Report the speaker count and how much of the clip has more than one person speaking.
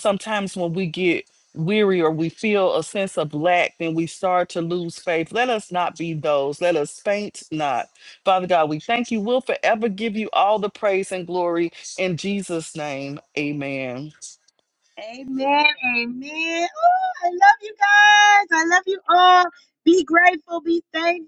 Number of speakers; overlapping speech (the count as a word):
two, no overlap